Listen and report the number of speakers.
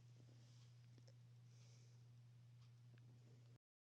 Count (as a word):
zero